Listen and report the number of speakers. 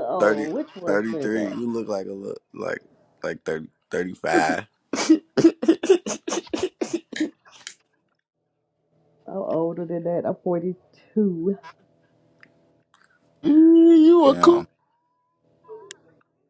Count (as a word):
three